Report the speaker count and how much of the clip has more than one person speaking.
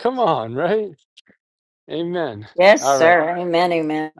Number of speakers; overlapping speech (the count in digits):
2, about 14%